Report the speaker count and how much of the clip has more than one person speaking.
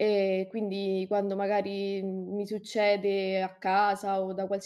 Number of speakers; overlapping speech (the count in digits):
1, no overlap